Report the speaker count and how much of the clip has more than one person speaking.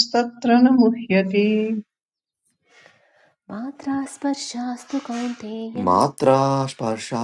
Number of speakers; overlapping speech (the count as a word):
three, about 1%